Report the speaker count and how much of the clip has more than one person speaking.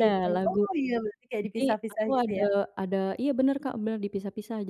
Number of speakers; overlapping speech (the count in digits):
2, about 29%